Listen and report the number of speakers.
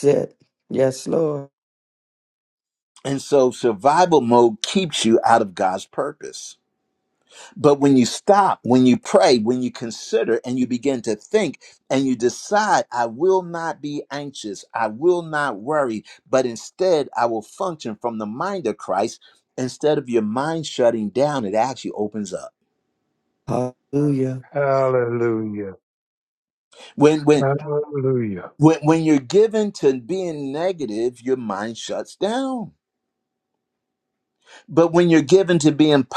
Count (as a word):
three